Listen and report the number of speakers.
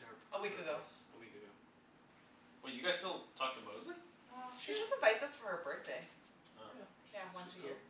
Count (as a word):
three